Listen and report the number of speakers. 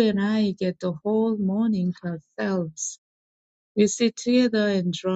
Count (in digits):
1